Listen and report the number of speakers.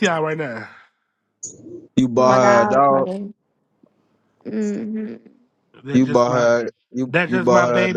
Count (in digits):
3